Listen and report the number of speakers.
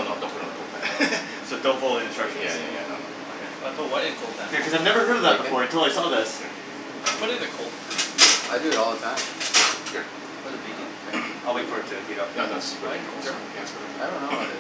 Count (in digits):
4